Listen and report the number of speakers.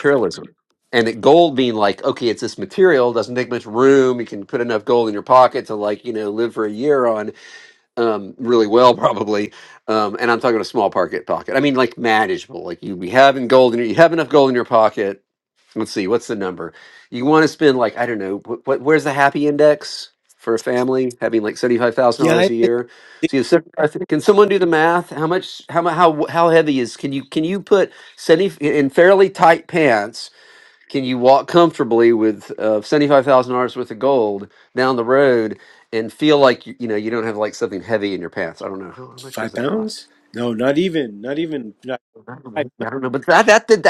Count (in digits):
2